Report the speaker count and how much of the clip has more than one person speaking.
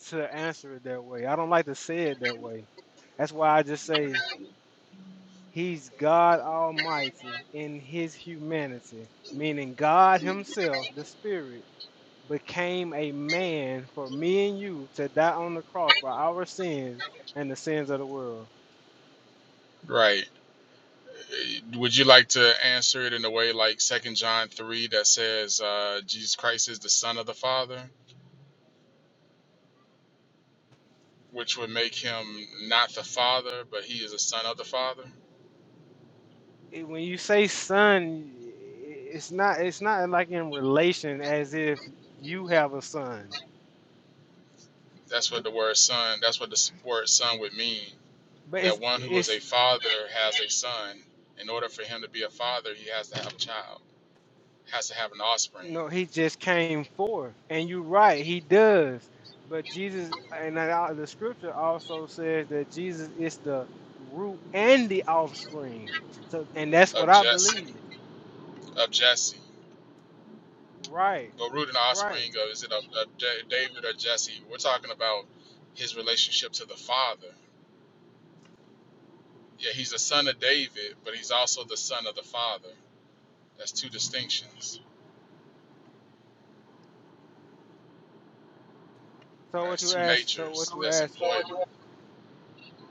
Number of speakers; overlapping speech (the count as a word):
two, about 4%